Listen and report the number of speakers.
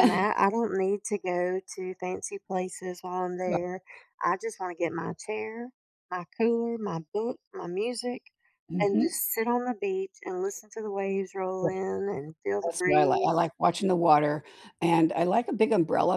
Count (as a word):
two